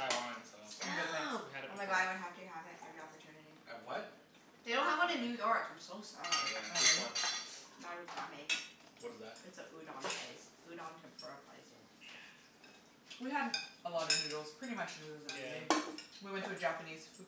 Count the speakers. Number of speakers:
four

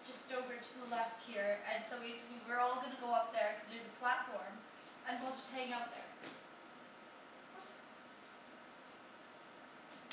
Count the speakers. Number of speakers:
one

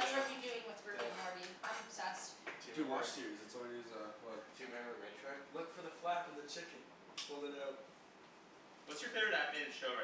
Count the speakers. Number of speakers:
four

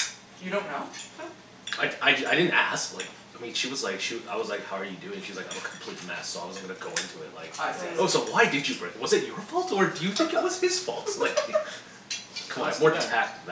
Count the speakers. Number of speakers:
two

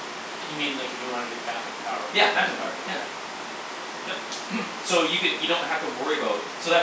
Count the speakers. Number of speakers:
two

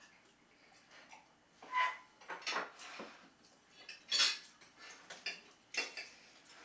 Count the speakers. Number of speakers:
zero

